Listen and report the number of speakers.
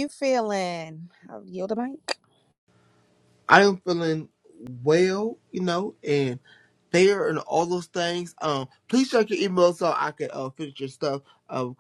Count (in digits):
2